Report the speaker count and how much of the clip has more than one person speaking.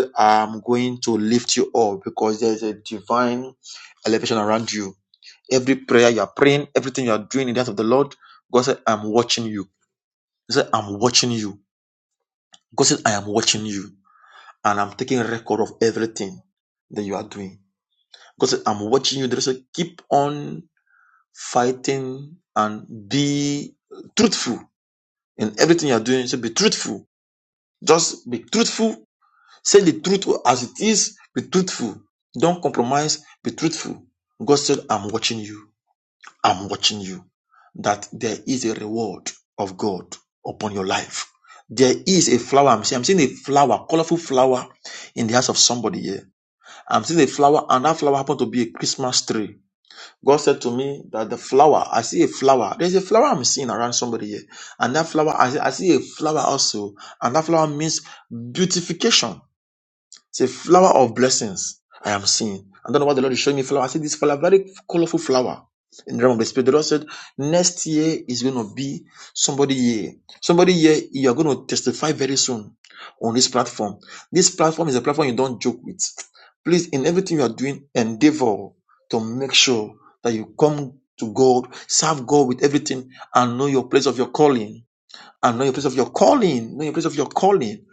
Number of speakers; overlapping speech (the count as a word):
one, no overlap